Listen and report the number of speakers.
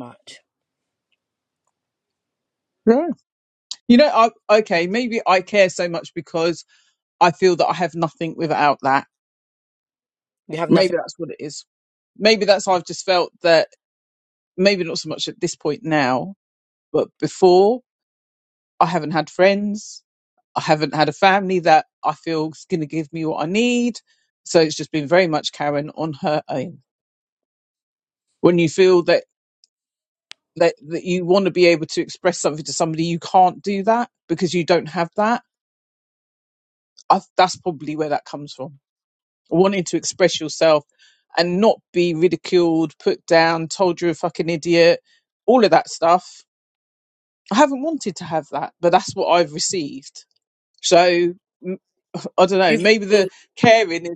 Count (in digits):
2